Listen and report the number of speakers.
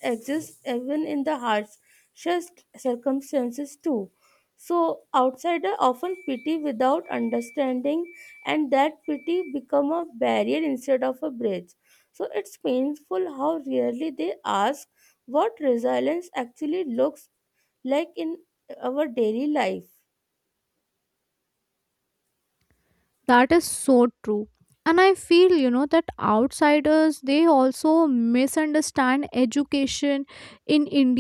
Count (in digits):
2